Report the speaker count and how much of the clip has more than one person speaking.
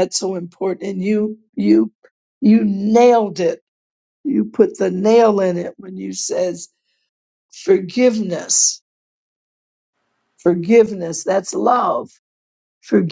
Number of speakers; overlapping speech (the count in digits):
1, no overlap